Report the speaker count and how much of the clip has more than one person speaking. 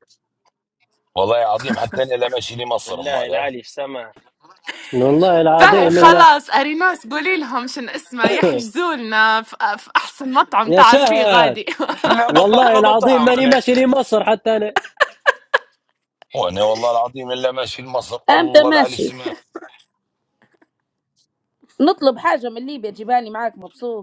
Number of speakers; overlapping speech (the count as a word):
five, about 18%